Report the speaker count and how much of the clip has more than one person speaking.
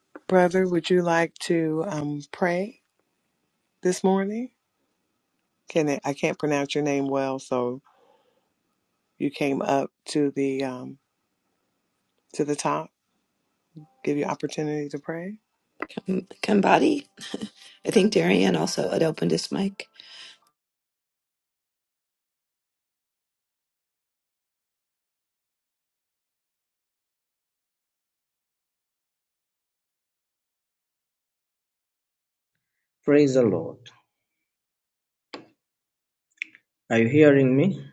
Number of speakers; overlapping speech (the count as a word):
three, no overlap